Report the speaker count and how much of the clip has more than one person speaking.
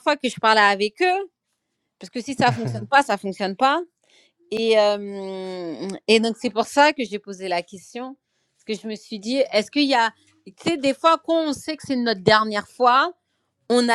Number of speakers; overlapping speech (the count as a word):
one, no overlap